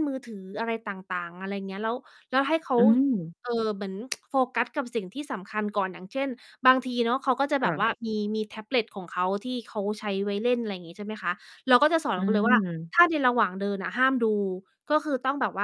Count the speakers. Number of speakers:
two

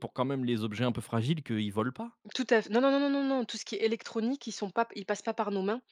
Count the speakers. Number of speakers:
two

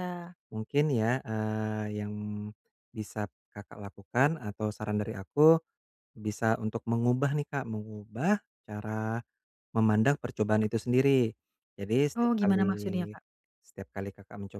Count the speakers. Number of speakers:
two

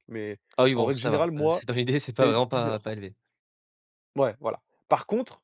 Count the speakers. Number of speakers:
two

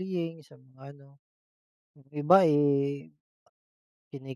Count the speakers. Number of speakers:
one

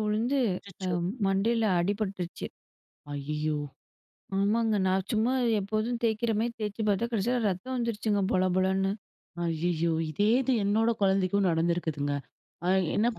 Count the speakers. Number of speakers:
two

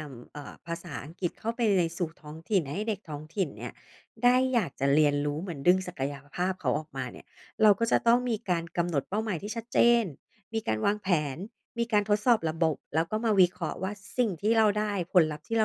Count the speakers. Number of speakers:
one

